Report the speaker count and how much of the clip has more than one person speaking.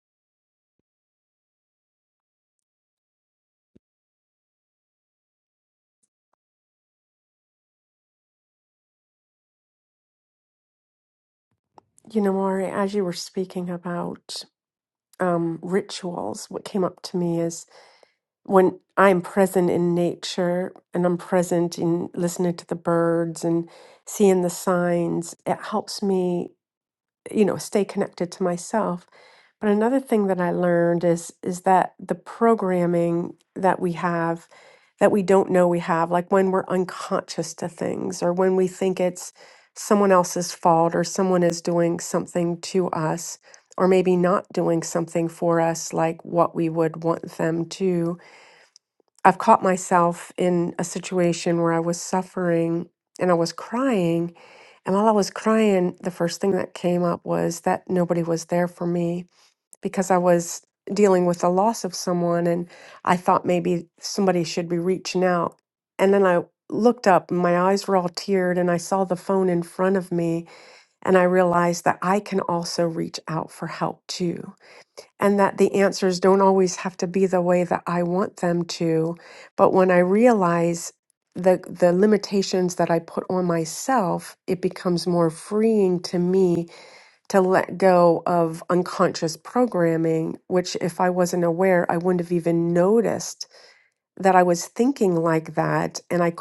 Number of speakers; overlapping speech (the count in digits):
1, no overlap